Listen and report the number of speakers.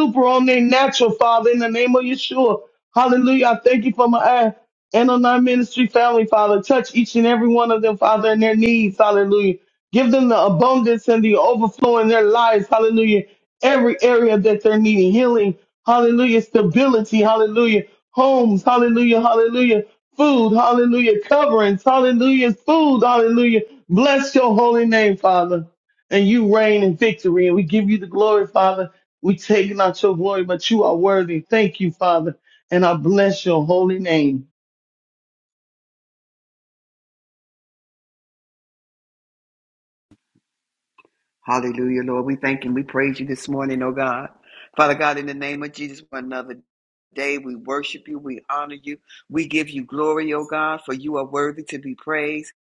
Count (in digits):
2